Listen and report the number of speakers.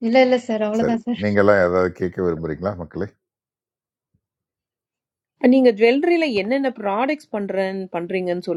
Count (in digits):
3